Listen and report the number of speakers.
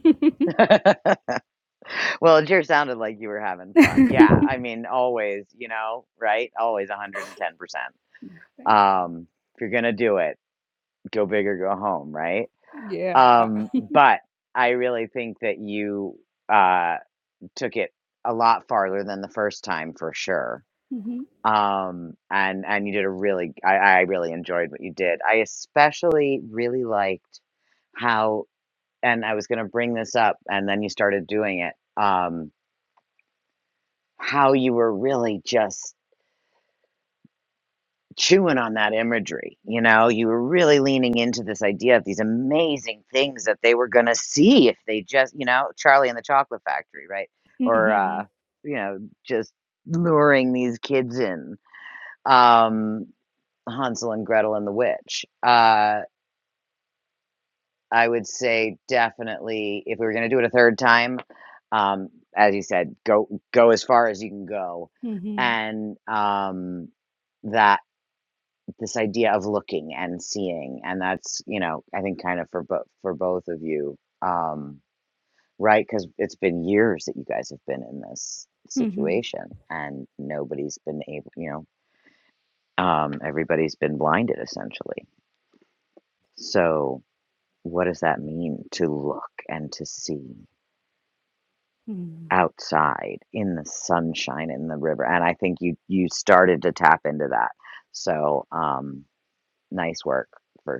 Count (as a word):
two